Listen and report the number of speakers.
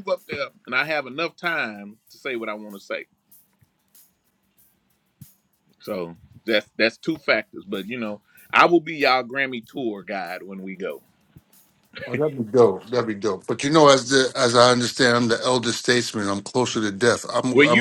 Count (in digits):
2